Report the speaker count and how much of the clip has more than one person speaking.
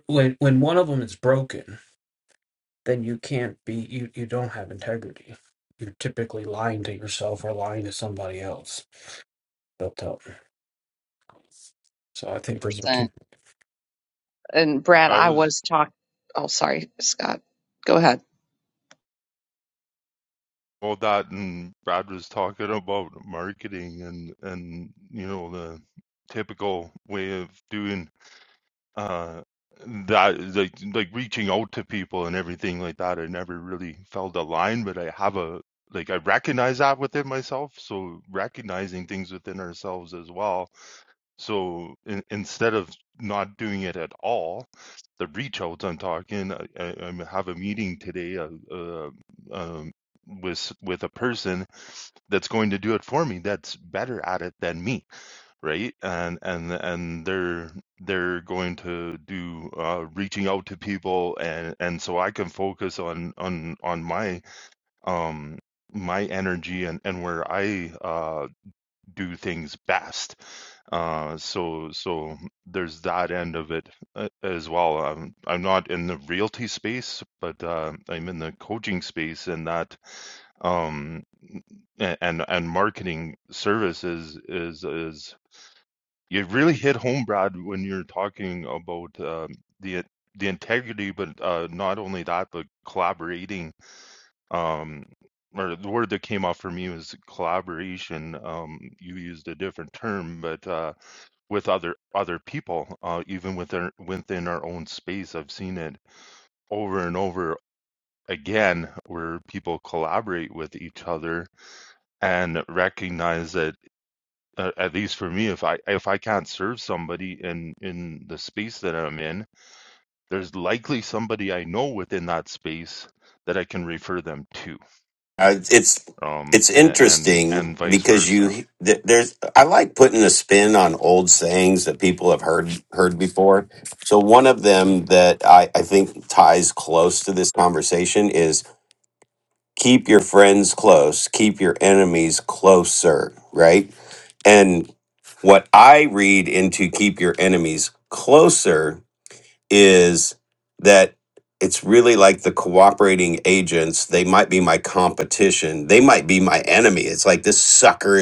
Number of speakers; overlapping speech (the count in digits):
4, about 2%